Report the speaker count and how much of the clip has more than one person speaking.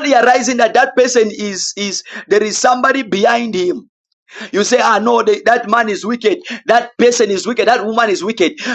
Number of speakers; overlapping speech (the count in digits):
1, no overlap